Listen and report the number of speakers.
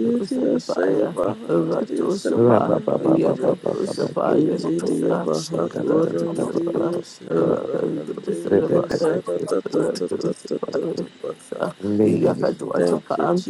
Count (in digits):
3